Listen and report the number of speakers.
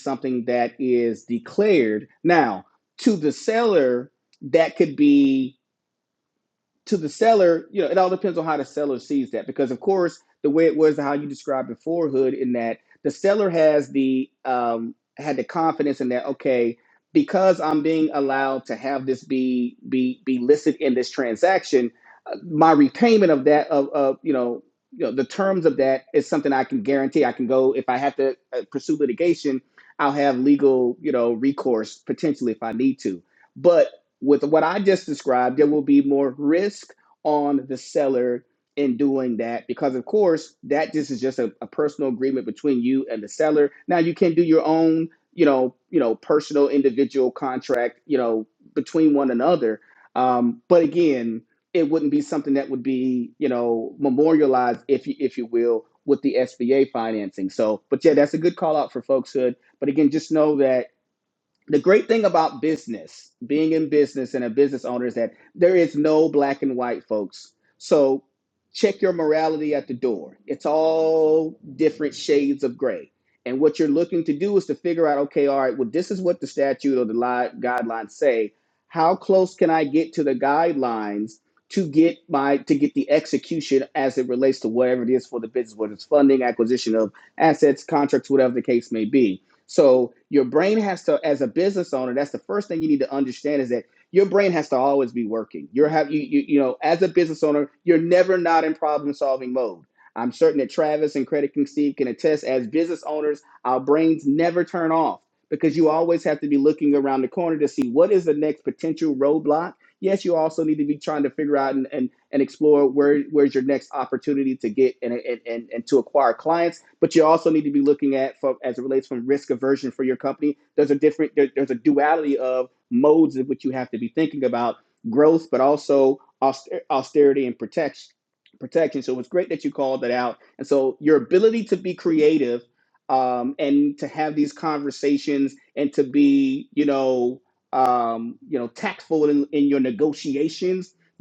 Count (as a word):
one